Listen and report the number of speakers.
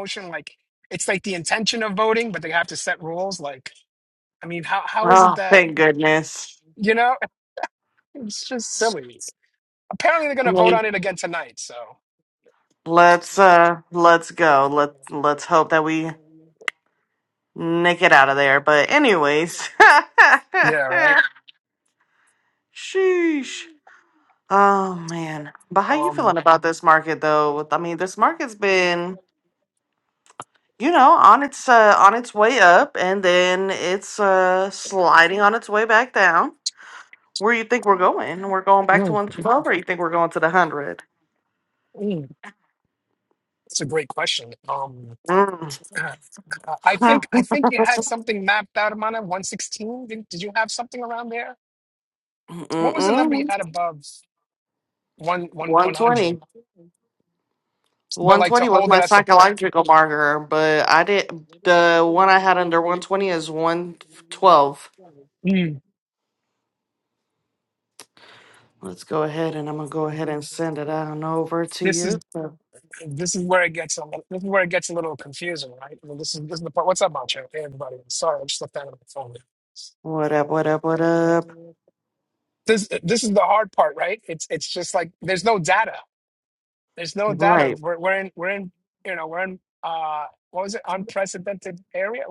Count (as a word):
two